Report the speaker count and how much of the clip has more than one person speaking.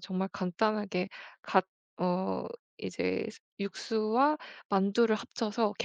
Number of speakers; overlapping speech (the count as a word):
one, no overlap